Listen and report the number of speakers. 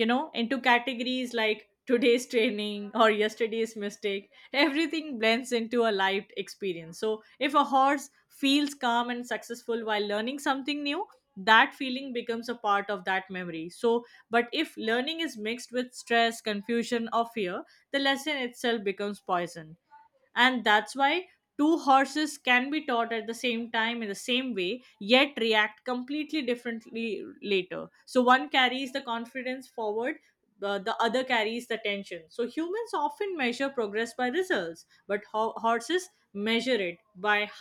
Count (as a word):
one